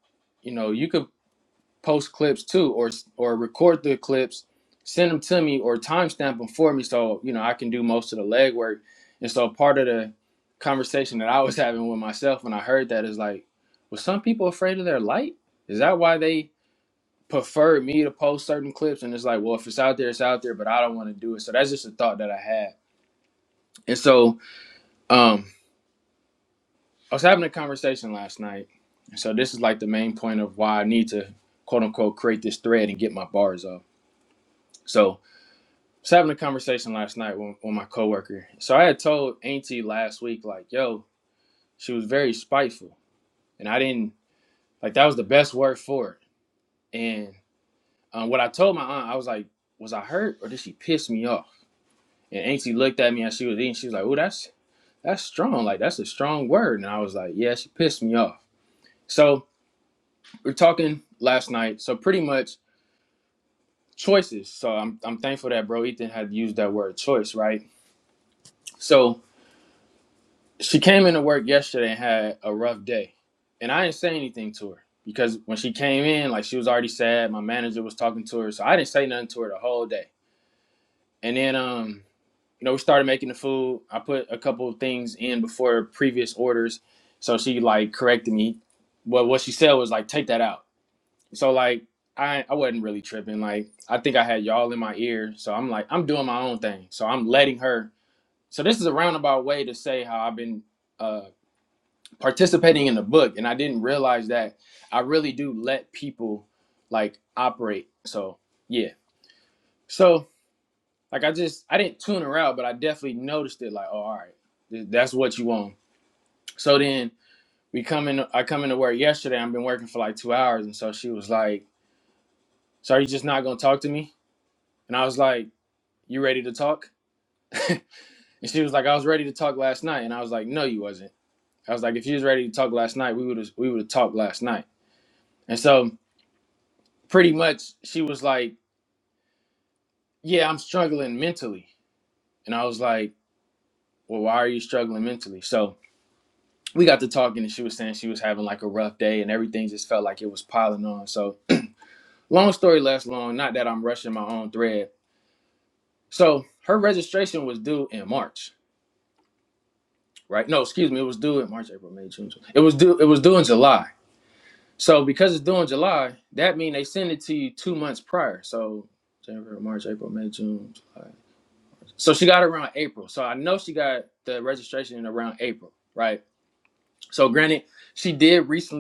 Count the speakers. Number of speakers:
1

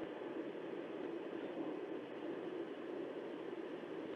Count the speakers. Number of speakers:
0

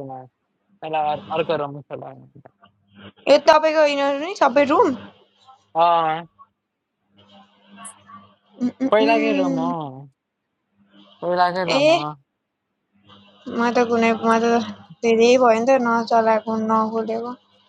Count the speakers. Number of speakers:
2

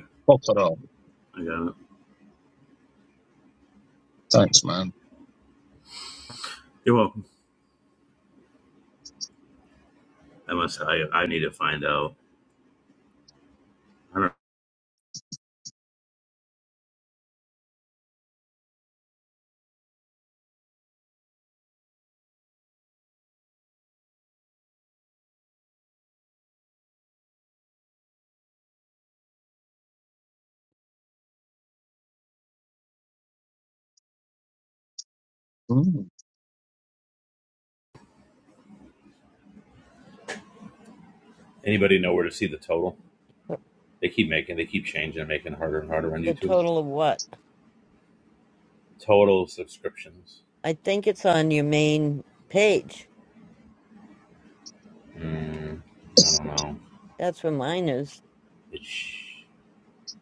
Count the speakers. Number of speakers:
3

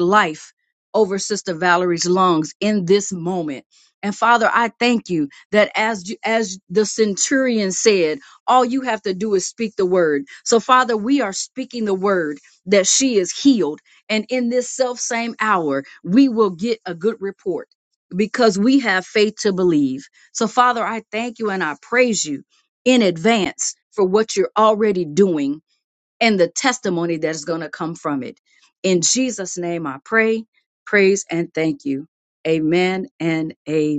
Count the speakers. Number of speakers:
1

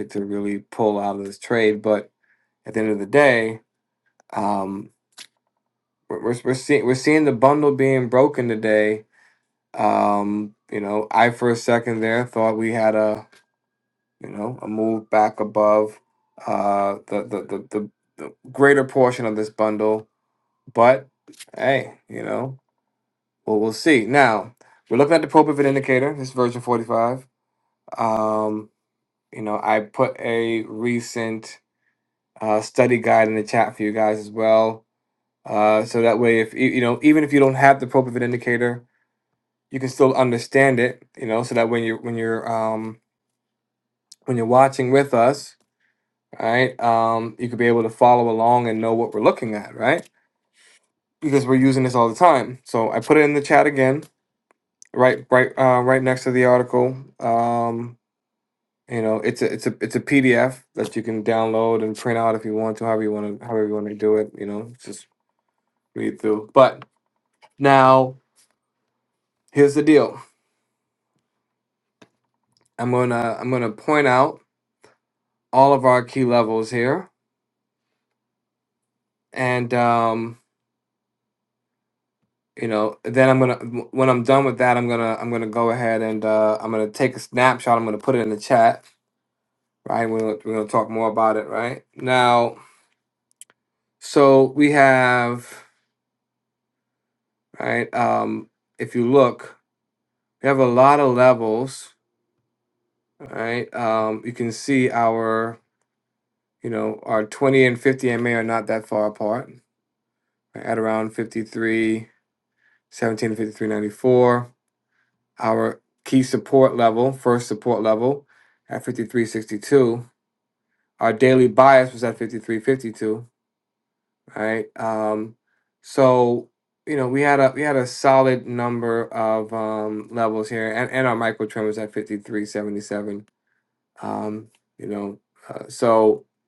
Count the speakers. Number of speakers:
1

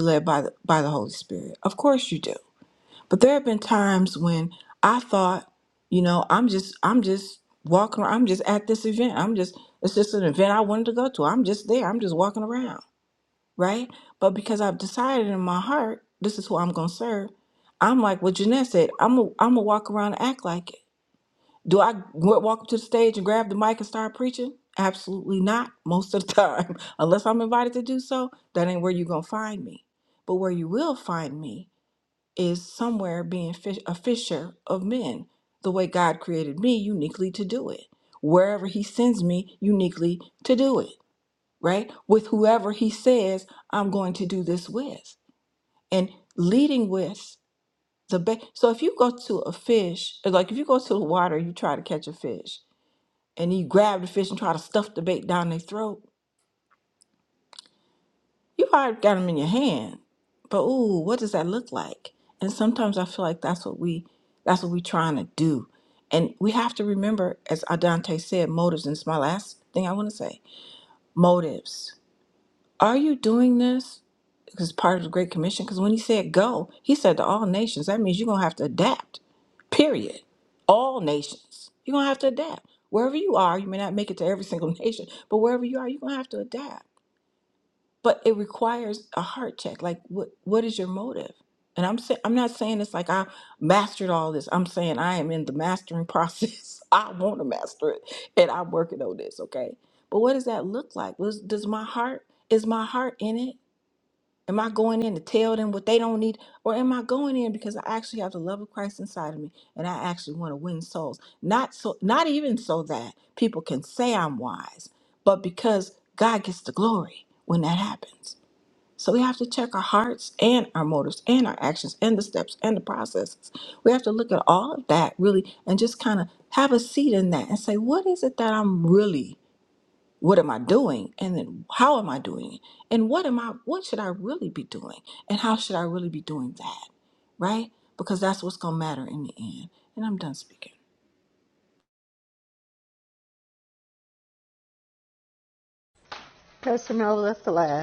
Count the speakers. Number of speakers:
2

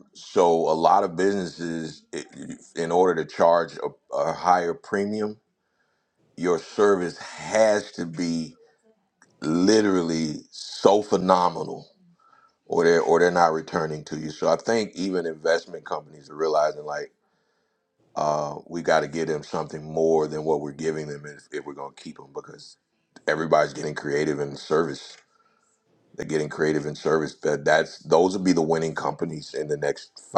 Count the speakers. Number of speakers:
1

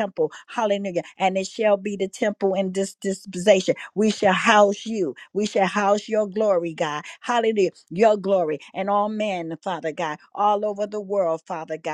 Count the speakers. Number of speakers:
1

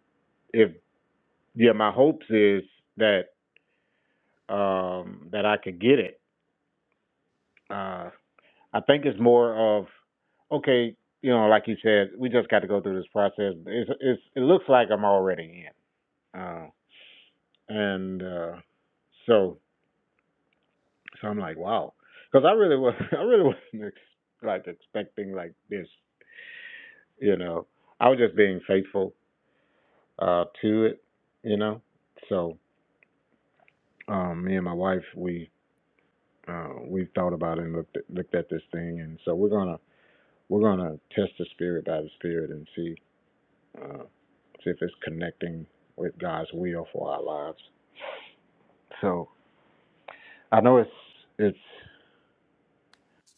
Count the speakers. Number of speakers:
1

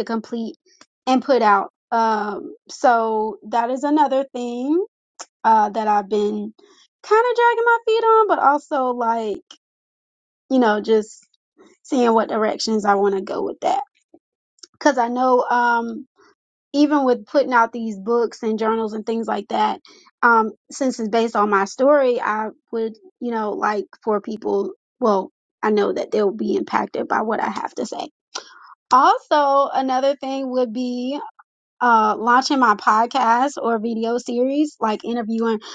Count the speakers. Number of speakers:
1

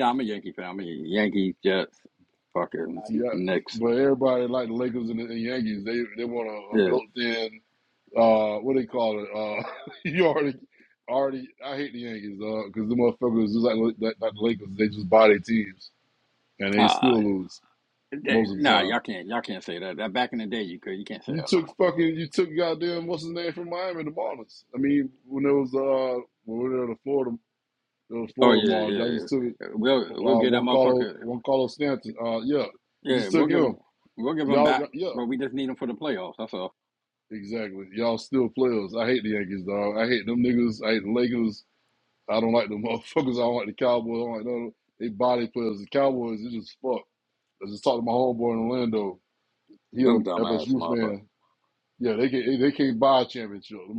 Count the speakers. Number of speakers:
2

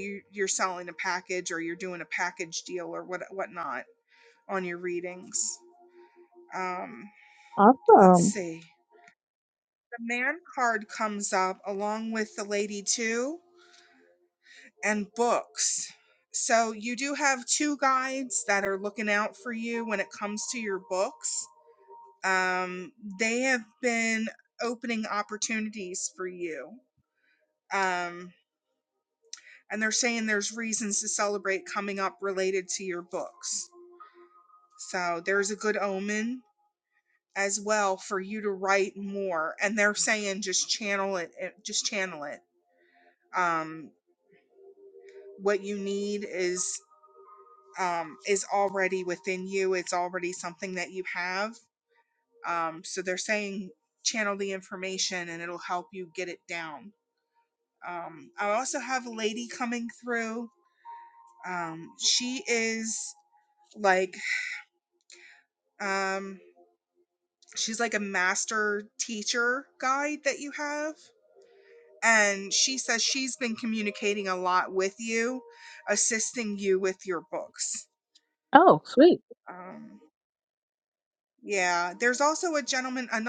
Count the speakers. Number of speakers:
2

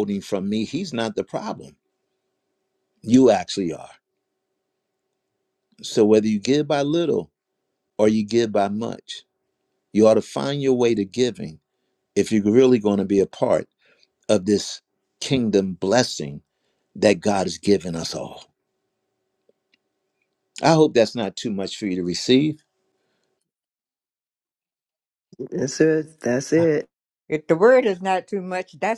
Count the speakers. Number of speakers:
3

